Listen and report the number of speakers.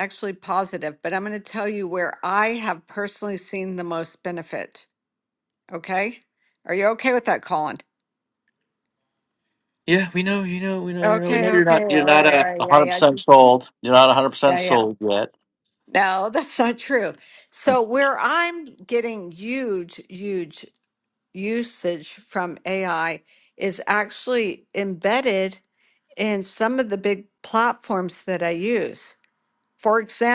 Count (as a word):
two